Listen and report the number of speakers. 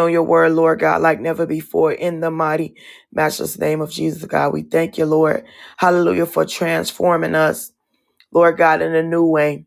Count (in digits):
1